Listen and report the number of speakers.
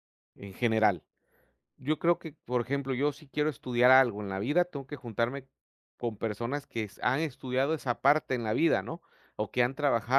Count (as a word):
one